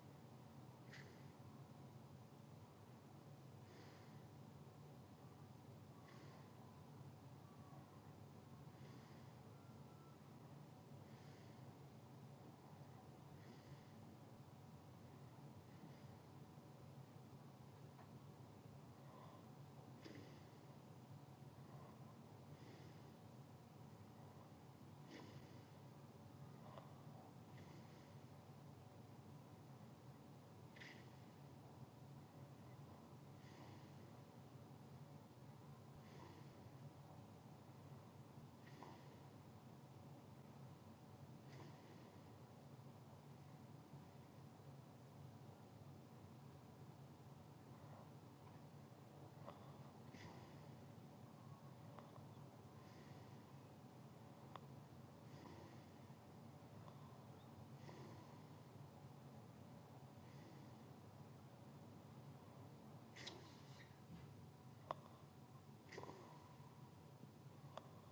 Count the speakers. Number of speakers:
zero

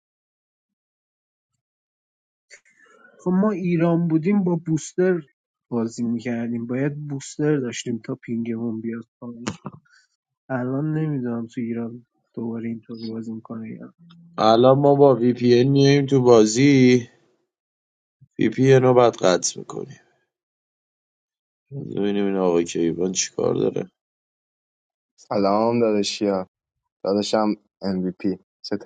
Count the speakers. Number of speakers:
three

